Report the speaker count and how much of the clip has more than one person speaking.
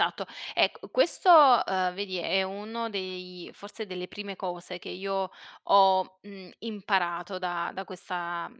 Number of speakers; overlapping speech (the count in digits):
1, no overlap